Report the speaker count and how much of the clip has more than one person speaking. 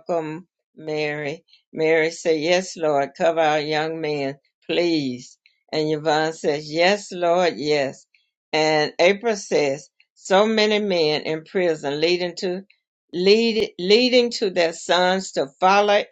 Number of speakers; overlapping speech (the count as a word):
one, no overlap